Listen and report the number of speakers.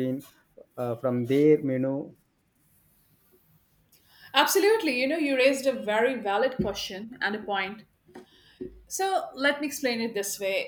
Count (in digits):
2